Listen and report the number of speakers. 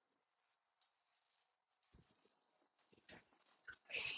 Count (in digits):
0